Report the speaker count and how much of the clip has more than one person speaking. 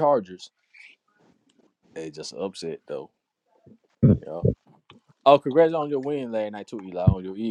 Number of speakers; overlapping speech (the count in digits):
1, no overlap